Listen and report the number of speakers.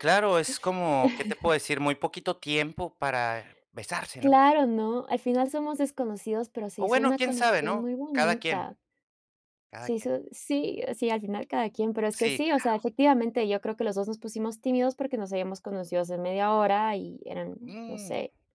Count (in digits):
2